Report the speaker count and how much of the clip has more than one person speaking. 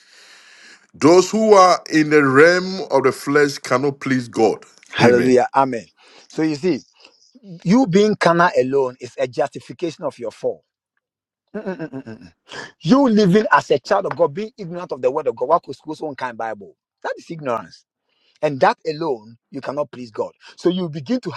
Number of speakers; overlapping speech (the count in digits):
2, about 1%